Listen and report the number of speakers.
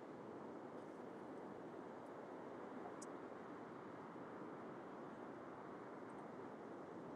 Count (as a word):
zero